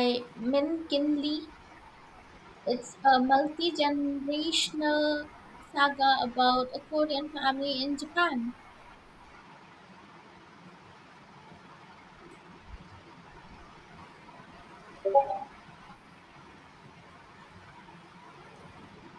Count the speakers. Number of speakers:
1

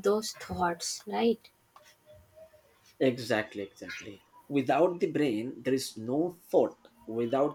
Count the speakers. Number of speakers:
2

